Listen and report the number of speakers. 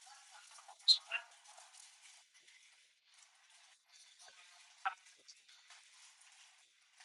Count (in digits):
0